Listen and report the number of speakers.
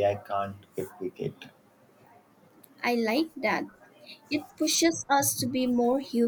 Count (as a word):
two